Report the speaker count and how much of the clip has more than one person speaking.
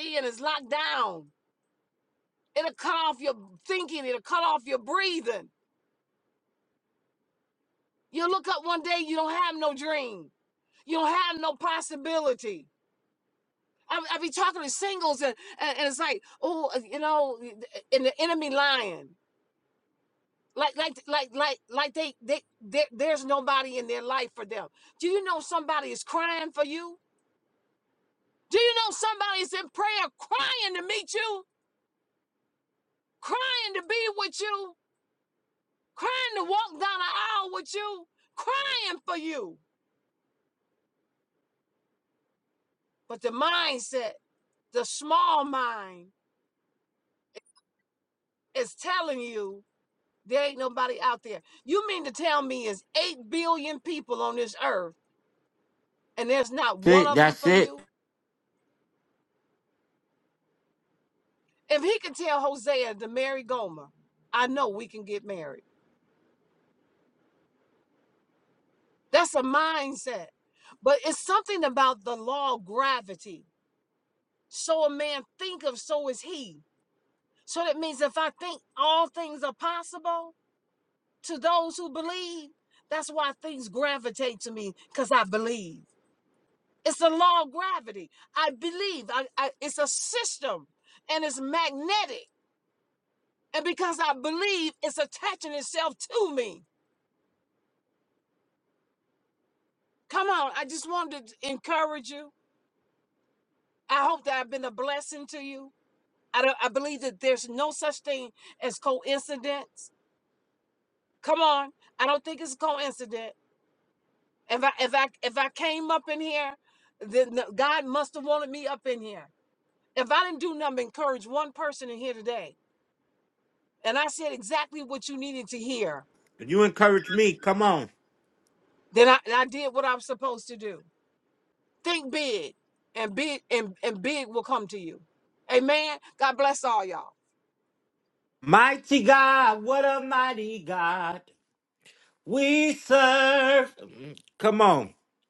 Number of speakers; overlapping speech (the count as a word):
two, about 1%